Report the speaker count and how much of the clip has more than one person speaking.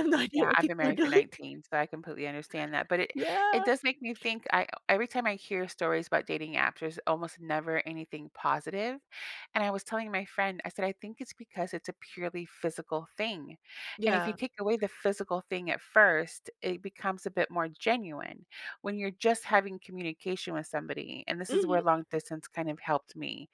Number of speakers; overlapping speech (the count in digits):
2, about 7%